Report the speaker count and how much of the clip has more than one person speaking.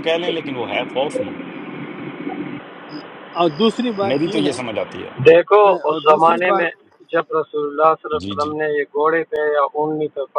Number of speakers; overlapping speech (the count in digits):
3, about 19%